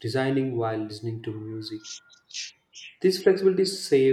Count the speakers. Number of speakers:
1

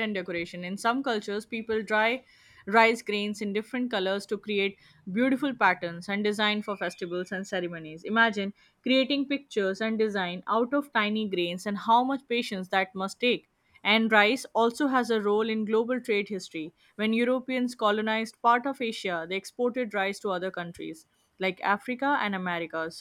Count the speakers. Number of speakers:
1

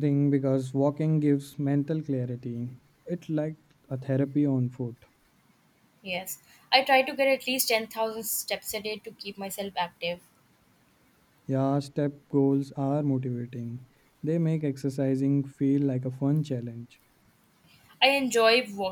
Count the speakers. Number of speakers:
2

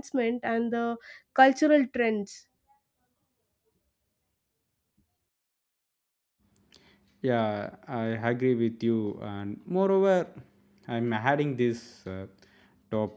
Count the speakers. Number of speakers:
2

